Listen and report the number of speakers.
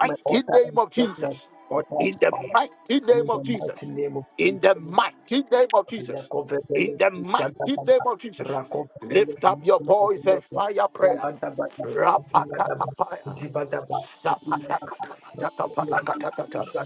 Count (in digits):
2